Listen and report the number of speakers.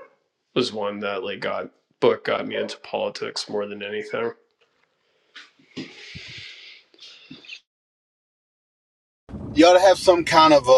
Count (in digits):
2